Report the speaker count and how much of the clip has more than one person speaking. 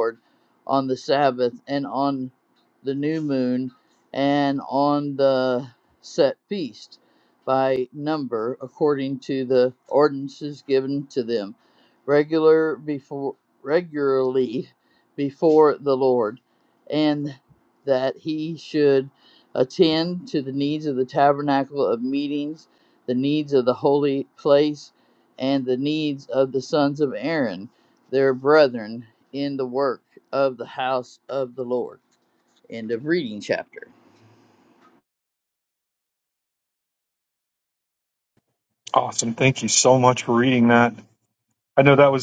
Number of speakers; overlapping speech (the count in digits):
2, no overlap